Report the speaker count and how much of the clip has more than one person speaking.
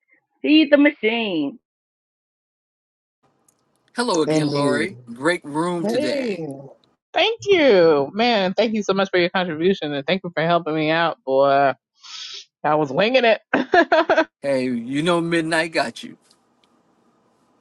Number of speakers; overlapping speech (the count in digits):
3, about 7%